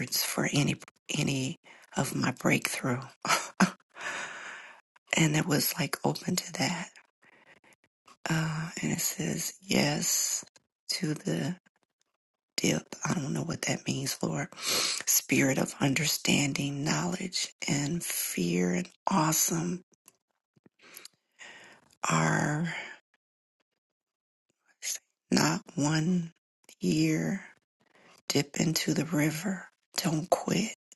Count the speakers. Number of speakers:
one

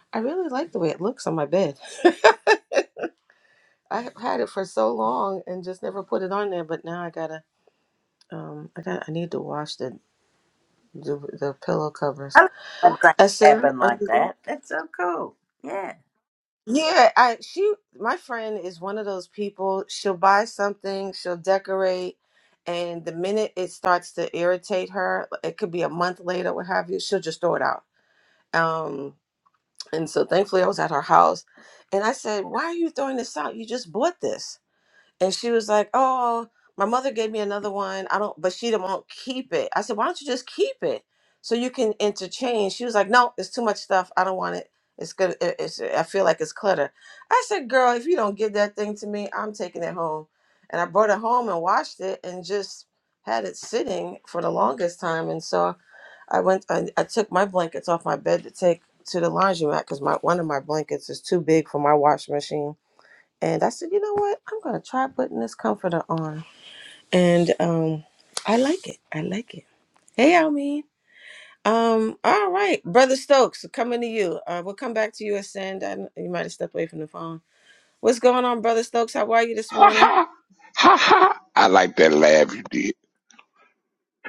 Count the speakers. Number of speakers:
three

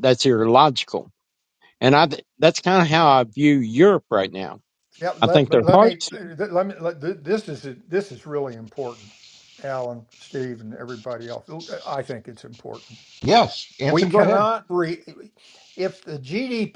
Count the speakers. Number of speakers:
three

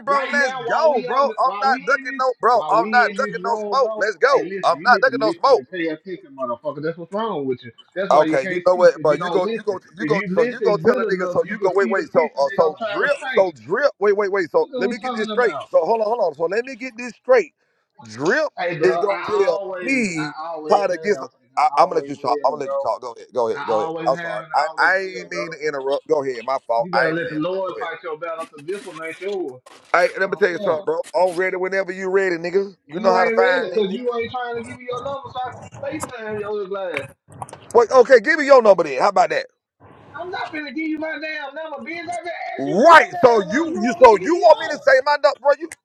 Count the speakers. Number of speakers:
two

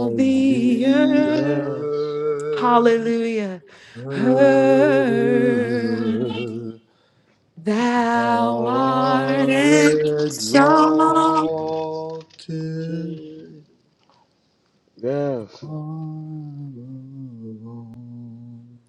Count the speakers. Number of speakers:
three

